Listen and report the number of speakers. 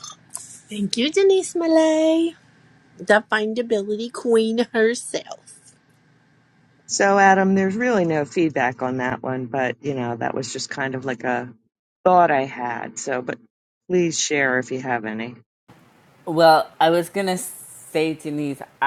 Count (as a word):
three